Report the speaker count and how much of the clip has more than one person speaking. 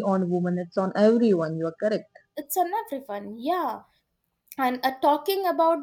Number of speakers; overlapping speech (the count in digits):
2, no overlap